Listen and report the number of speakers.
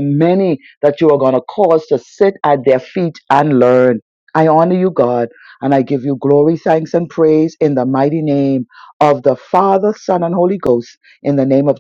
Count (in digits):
1